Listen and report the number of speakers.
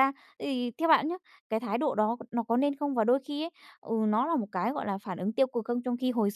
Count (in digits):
1